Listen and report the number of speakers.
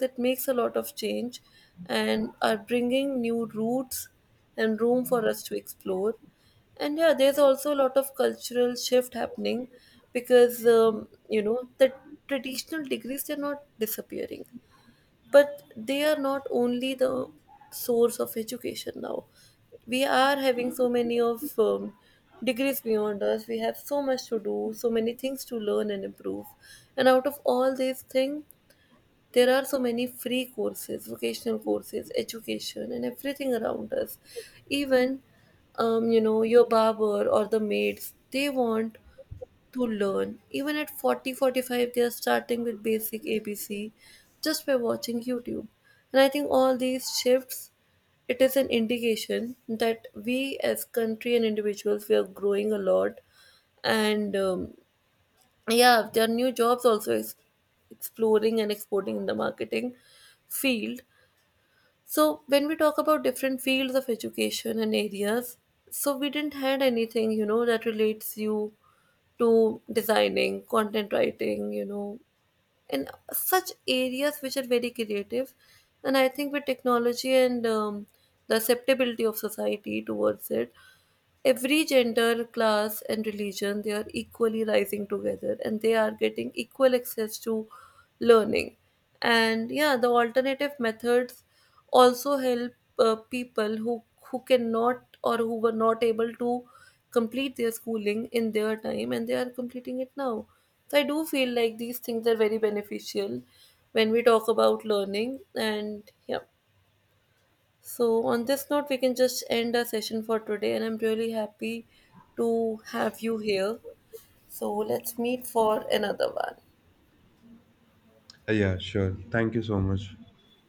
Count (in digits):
2